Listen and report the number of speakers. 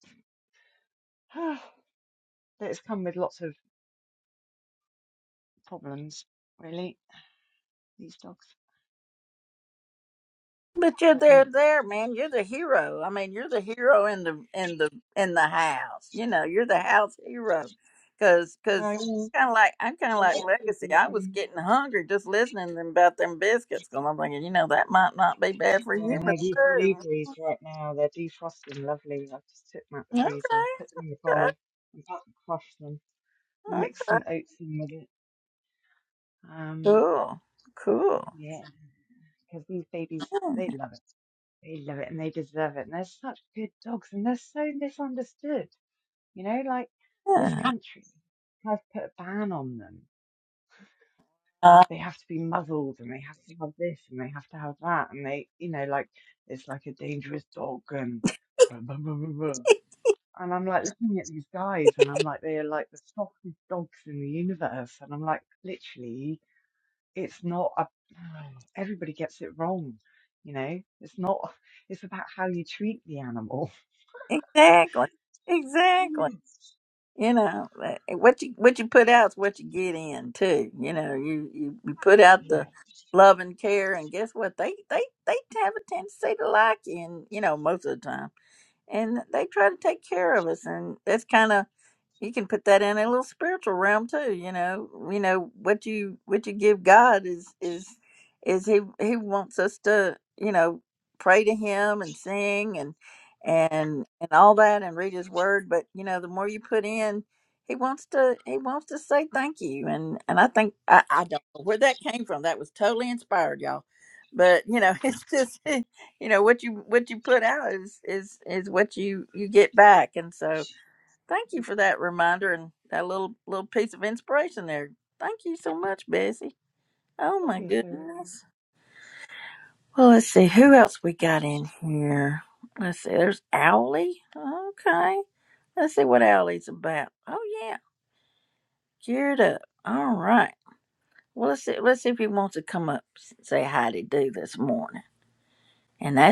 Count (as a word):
two